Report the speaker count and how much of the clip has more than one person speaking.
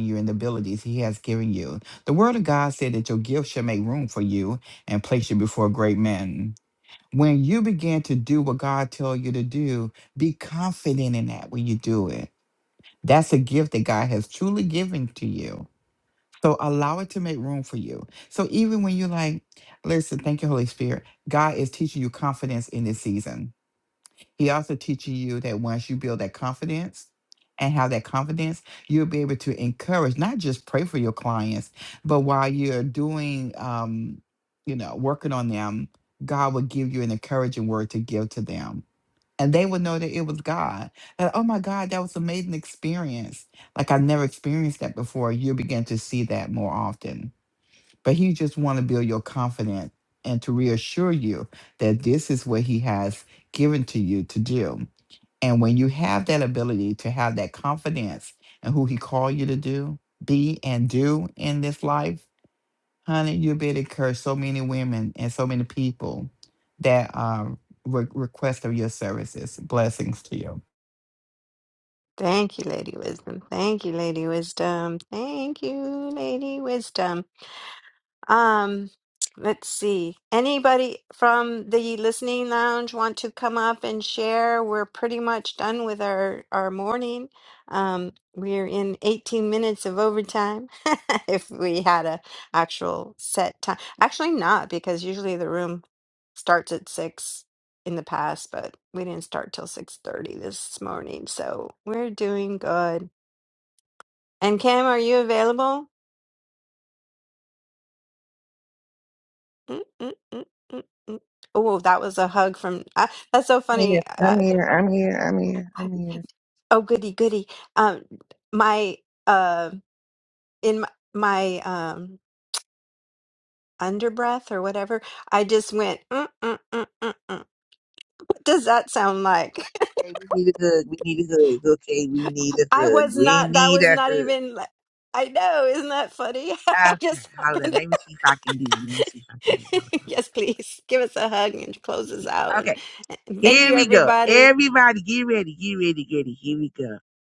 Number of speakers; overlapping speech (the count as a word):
three, about 3%